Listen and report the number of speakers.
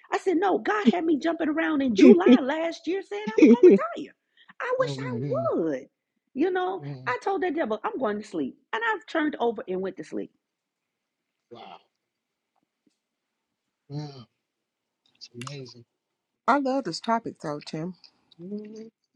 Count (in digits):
3